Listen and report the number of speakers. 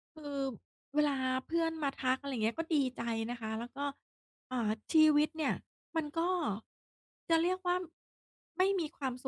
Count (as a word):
one